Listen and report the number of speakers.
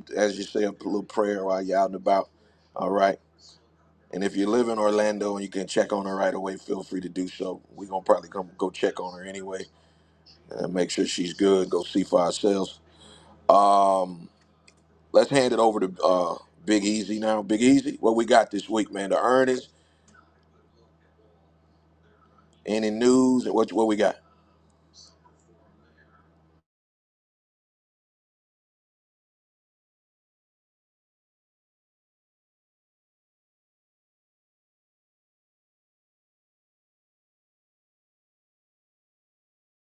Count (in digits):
1